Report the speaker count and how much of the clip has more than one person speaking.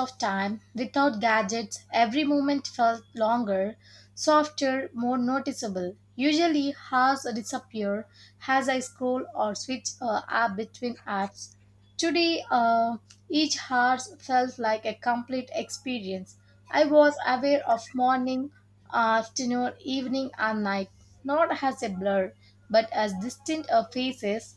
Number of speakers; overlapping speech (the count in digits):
1, no overlap